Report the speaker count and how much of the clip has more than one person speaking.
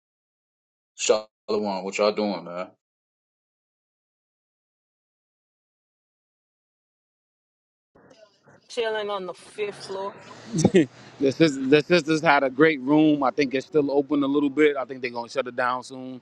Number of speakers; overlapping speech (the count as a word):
three, no overlap